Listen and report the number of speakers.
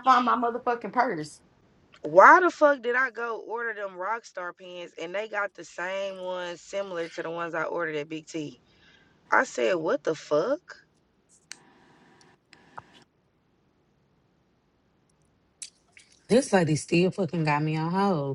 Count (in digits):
3